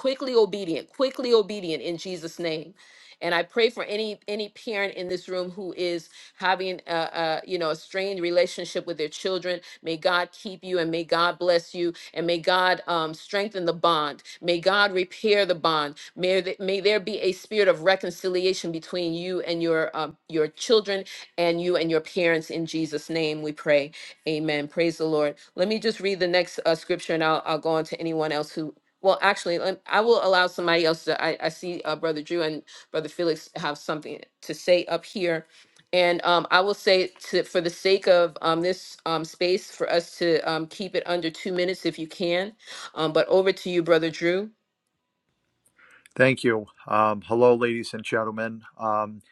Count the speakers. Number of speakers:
2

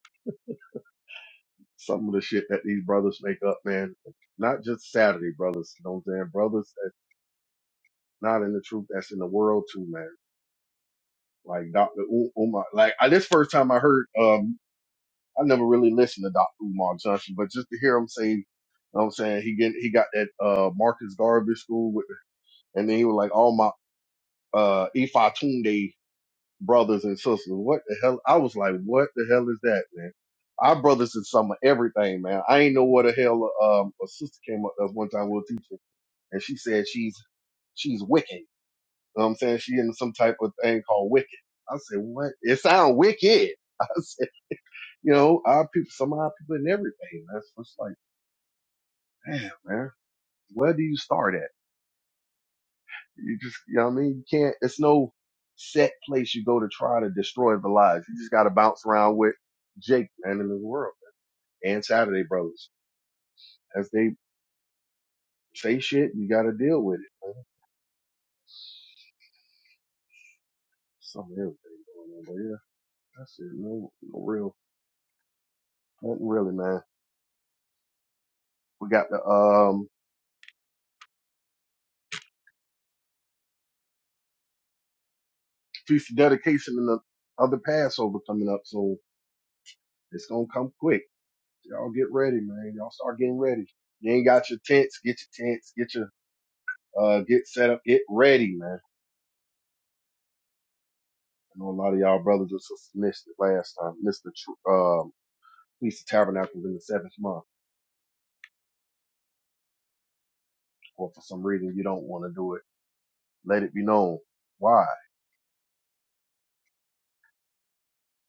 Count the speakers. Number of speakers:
1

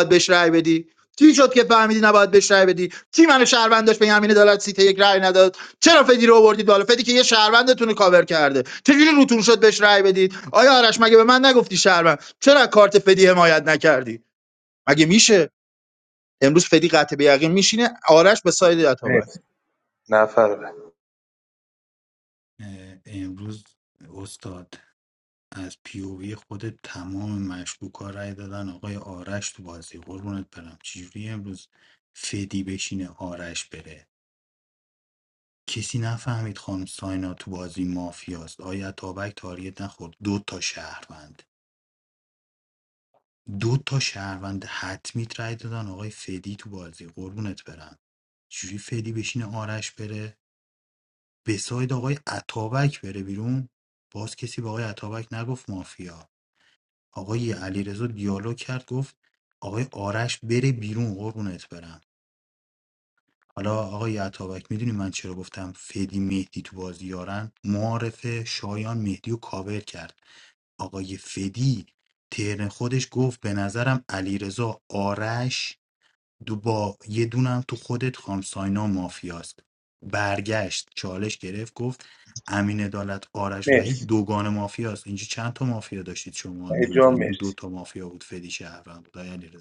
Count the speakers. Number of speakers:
3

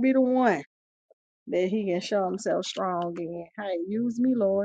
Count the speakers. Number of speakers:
1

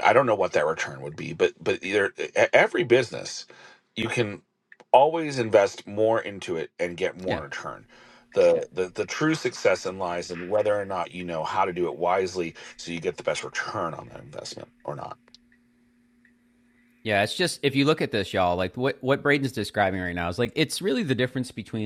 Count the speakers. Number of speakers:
2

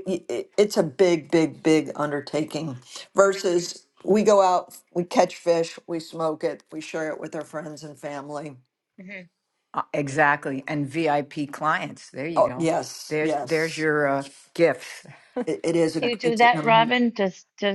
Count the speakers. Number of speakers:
3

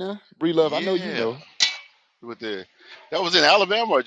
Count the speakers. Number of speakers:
2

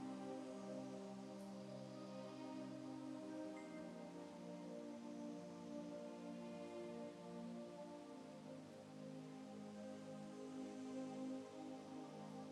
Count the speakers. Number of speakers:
0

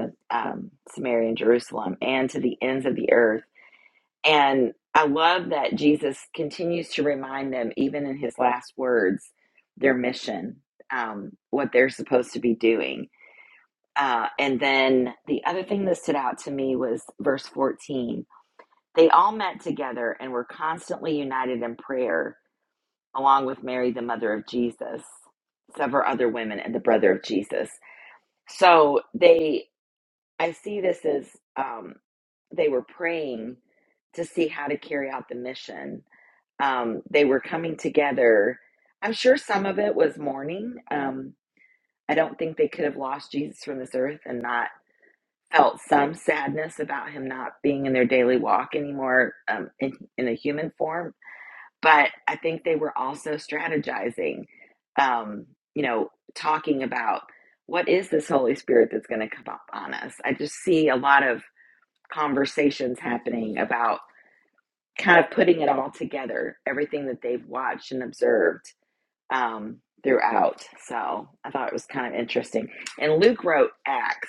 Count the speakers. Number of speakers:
1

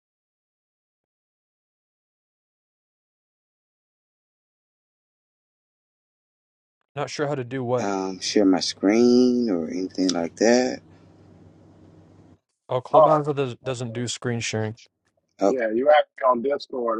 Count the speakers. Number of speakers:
3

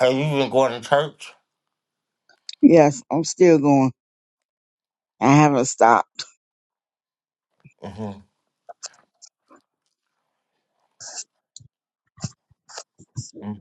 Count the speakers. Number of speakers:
2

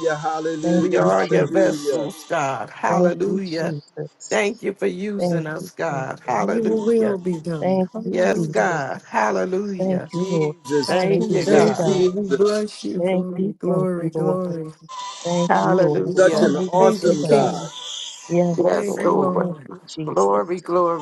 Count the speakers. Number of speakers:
4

